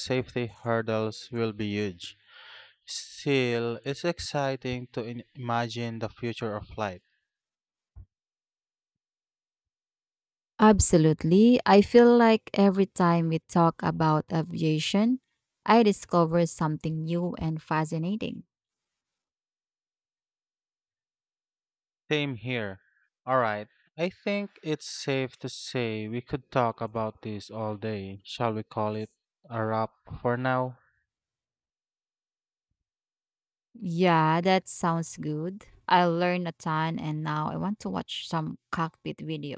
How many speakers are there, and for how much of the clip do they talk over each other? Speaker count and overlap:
two, no overlap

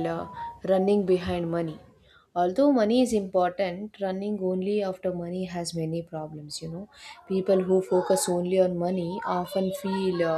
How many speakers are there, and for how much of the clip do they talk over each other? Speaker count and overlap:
one, no overlap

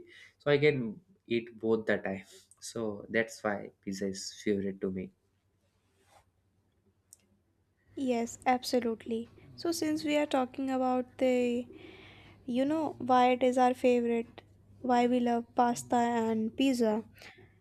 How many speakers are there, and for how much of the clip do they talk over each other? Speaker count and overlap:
two, no overlap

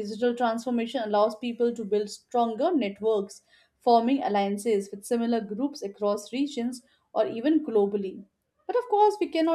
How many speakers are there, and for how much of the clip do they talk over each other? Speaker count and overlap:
one, no overlap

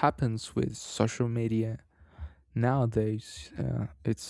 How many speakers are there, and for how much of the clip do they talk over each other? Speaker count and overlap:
one, no overlap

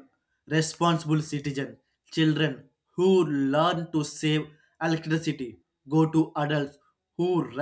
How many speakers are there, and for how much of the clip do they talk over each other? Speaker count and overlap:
one, no overlap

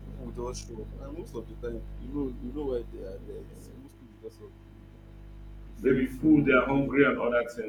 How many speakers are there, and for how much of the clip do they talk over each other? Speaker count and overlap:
two, about 14%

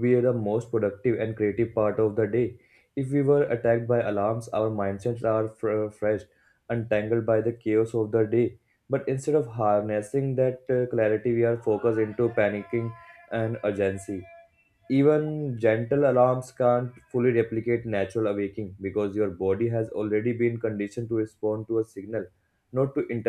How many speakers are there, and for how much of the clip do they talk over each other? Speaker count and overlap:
one, no overlap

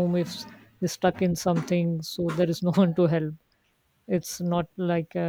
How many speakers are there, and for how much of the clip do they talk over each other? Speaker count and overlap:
one, no overlap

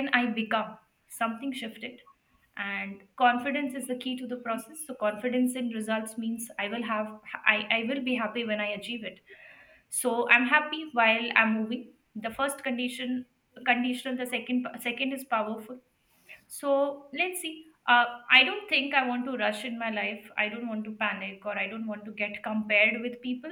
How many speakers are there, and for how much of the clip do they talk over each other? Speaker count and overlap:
one, no overlap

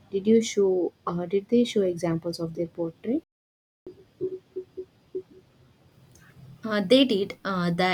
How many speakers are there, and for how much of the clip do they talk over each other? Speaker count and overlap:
two, no overlap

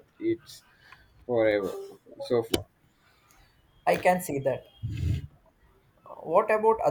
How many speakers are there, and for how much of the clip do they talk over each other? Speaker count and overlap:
two, no overlap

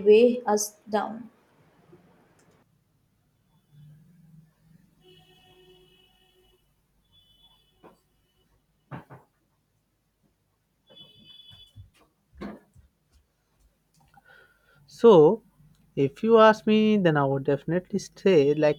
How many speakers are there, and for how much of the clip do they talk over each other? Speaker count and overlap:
two, no overlap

